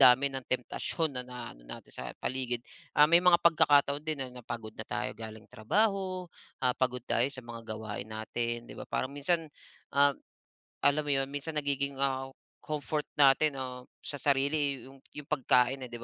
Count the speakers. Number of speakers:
one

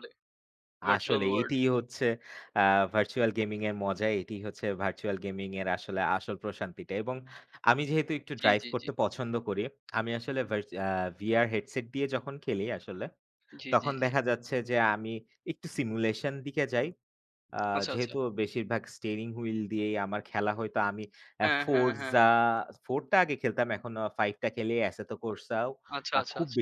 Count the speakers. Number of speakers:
two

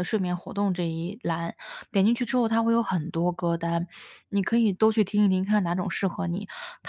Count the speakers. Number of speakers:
one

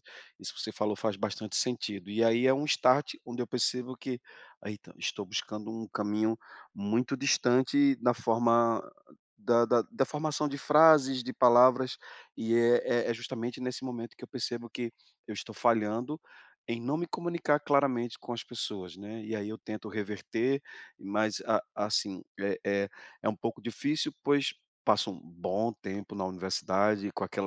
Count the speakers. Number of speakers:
one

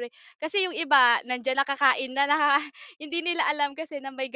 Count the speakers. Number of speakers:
one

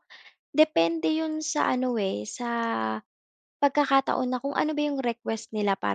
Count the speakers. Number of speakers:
one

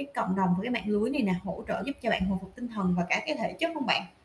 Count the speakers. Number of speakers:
one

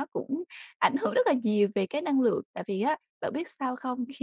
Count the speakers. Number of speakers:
one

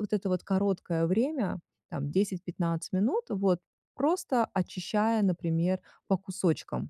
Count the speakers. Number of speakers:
one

